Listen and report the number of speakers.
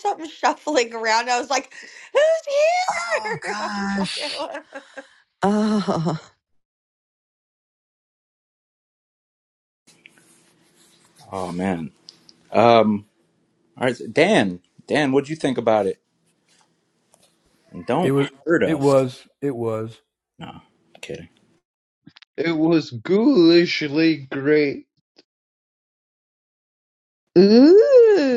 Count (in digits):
6